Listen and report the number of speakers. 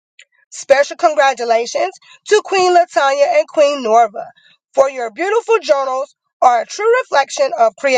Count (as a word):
one